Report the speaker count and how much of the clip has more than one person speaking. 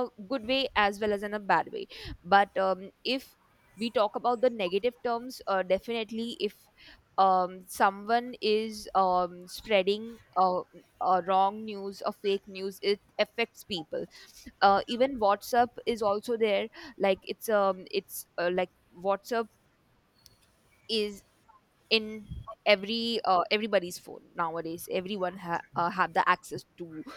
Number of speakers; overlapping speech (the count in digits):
1, no overlap